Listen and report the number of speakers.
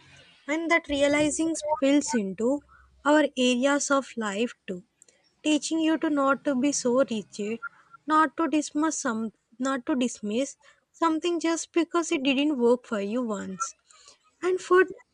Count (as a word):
one